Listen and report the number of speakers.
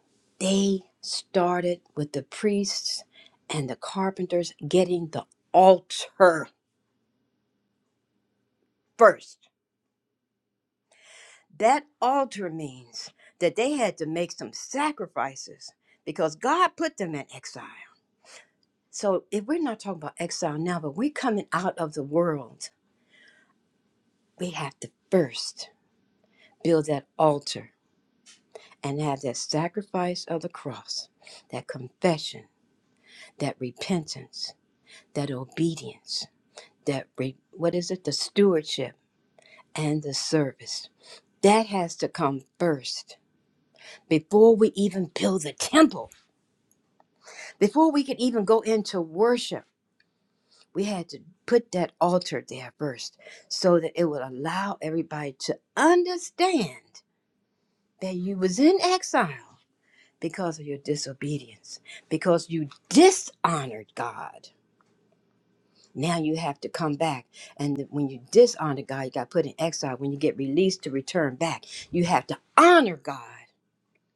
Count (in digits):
1